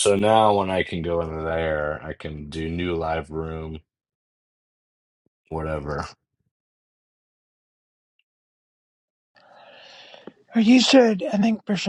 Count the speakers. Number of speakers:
2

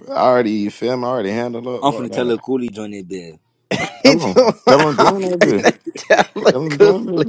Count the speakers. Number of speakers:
3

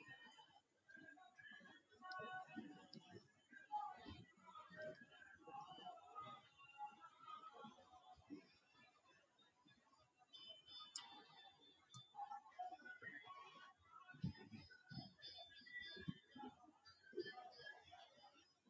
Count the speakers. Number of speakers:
0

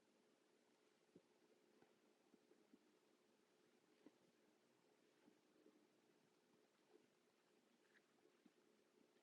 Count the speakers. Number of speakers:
0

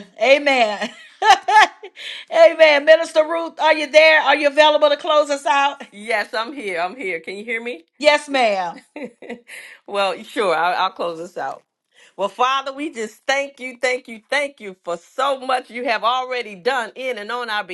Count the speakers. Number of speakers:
2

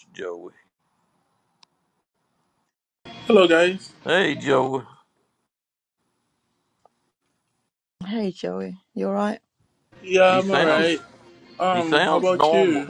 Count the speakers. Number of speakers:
3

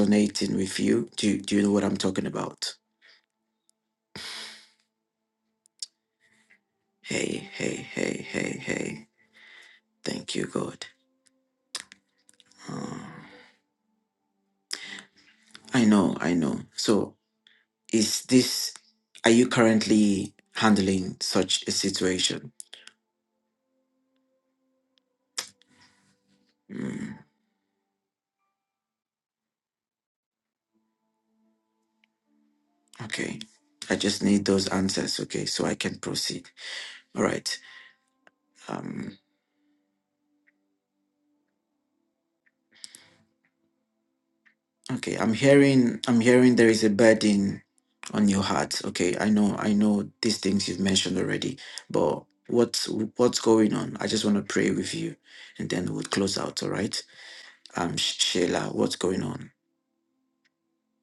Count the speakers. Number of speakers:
1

